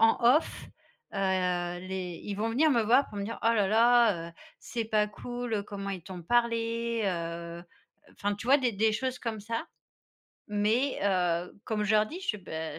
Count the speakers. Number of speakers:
one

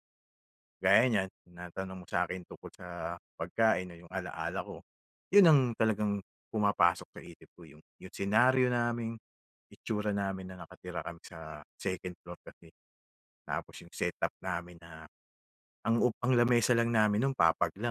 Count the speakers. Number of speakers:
one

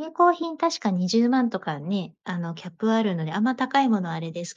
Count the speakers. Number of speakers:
one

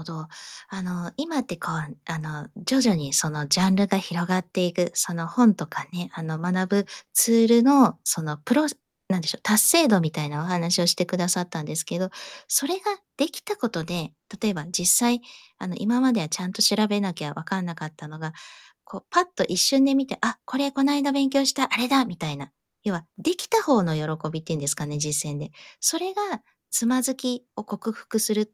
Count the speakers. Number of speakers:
one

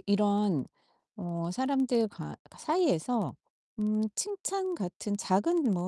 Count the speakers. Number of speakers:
one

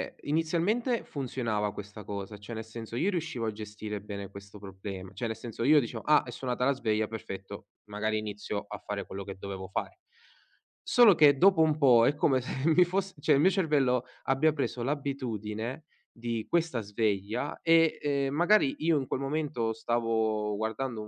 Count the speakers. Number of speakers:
one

